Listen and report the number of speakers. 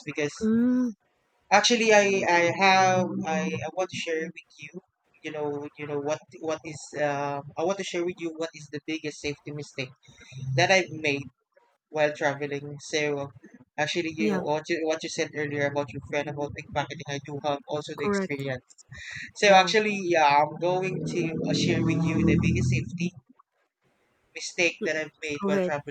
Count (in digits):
2